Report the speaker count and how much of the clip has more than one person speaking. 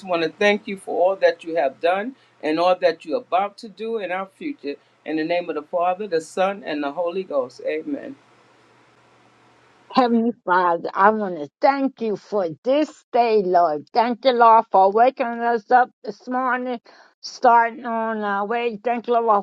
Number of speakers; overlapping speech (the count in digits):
2, no overlap